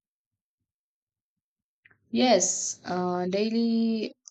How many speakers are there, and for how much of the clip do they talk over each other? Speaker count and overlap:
1, no overlap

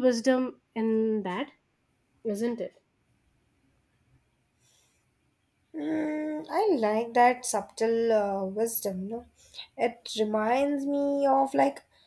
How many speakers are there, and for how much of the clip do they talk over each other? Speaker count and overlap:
2, no overlap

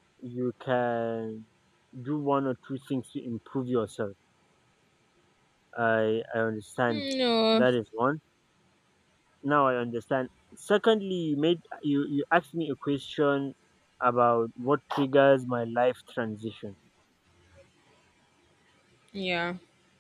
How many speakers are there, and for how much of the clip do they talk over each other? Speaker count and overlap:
2, about 1%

